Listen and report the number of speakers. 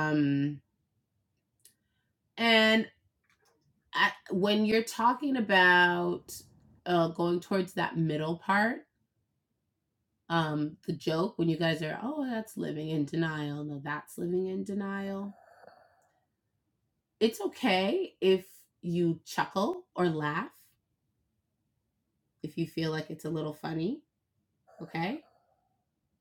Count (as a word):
one